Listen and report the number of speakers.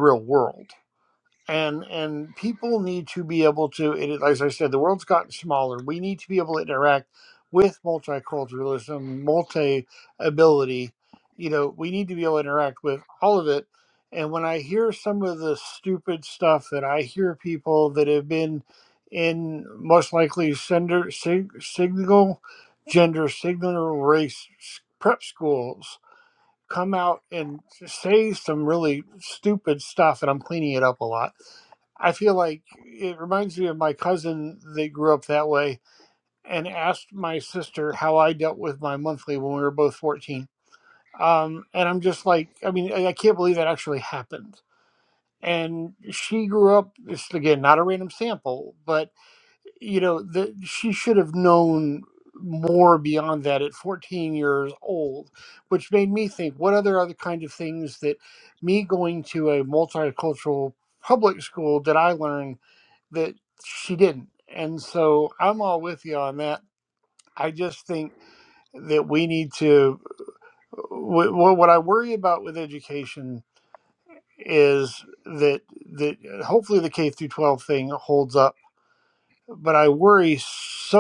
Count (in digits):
1